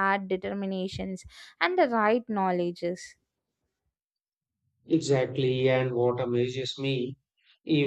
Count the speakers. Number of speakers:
two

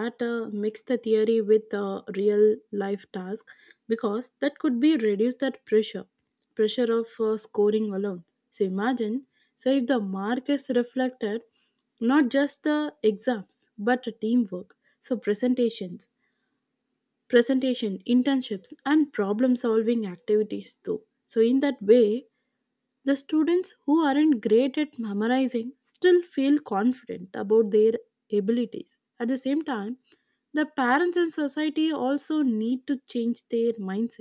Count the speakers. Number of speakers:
one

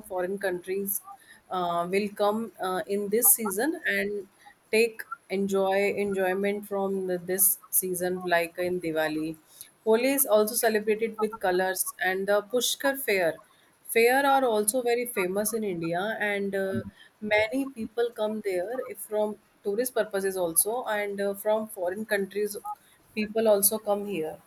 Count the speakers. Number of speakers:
one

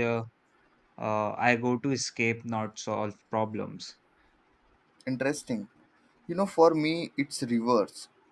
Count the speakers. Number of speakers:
two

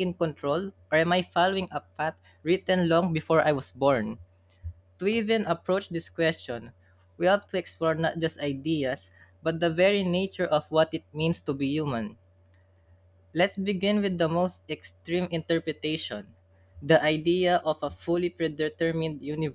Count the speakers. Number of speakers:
one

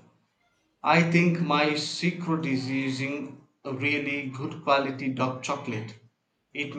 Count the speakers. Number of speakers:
one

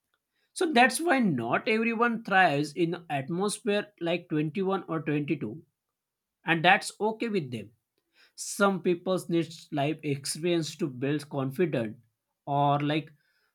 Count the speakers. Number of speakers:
one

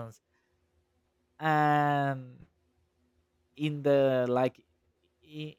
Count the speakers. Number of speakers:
one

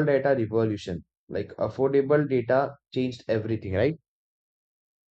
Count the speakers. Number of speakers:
one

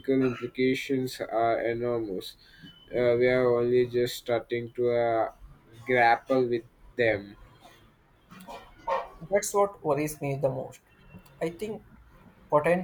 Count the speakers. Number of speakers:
two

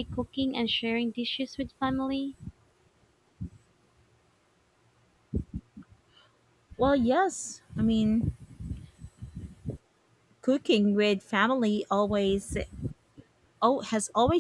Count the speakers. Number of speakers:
two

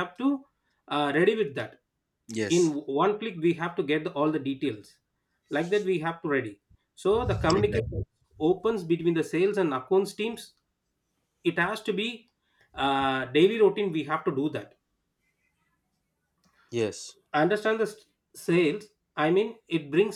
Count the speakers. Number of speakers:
two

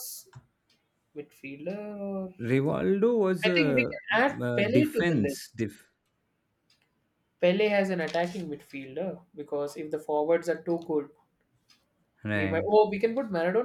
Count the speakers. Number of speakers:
two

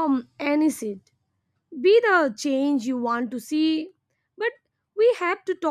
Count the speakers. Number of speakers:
one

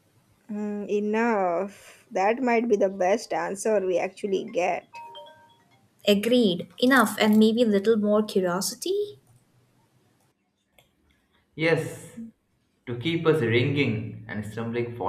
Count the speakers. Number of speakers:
three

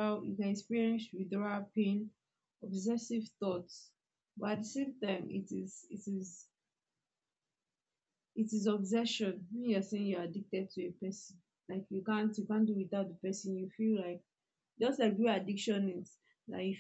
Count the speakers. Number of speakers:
one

